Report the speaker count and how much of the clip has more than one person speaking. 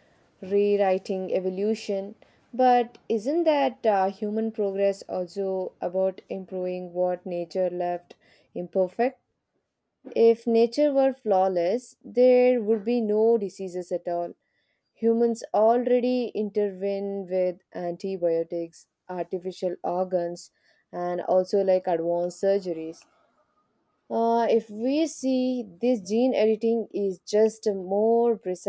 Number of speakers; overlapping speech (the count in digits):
1, no overlap